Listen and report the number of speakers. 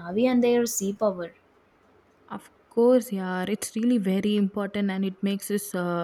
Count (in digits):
2